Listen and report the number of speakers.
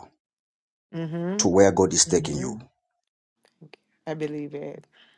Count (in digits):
2